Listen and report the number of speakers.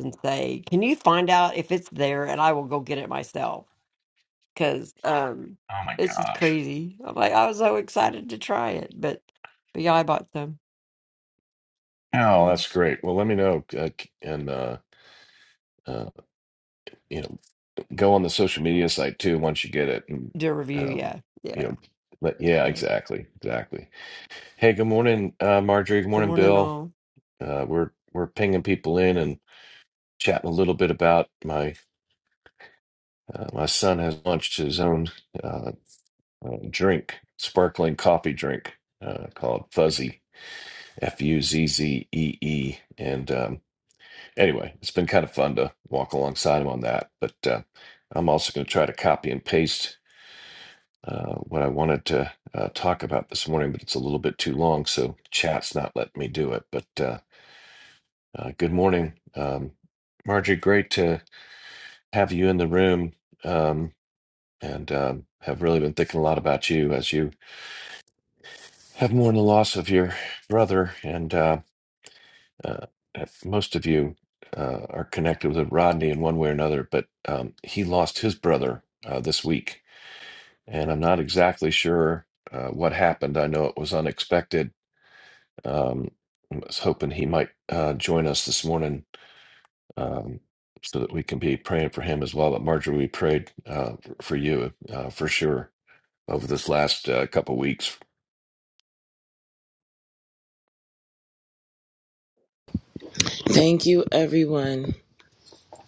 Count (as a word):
three